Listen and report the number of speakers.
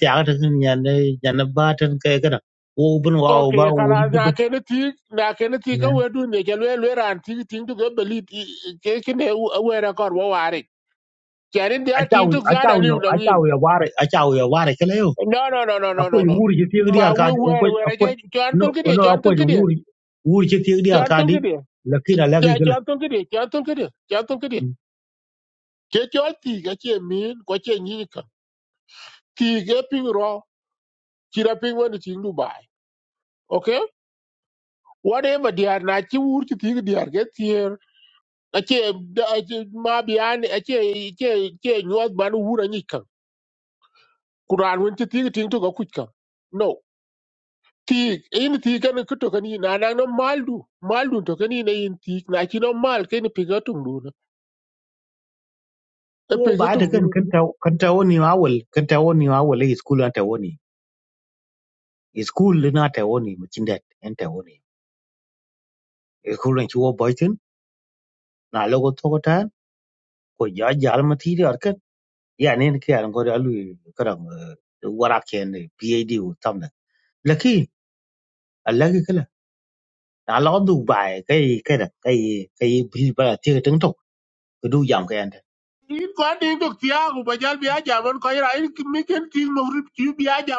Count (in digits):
2